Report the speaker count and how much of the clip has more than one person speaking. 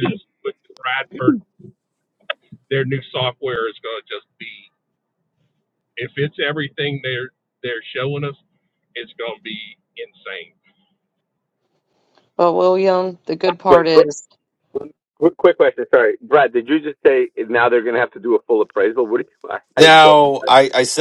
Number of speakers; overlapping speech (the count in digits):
4, about 3%